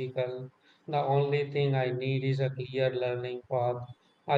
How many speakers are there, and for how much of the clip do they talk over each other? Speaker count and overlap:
1, no overlap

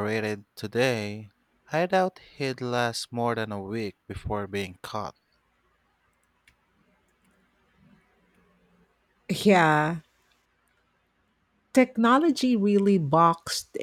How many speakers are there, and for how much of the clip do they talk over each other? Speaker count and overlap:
2, no overlap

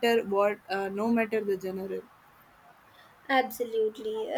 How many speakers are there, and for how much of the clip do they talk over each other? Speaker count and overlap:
2, no overlap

